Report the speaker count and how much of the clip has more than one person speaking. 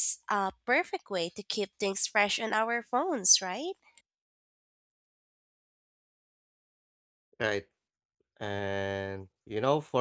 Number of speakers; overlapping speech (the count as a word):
two, no overlap